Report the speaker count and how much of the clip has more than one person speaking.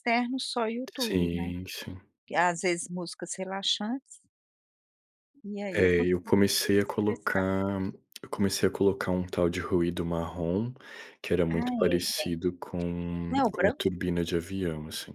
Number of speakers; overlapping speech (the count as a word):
two, about 19%